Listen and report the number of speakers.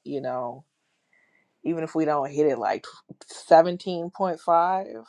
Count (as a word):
one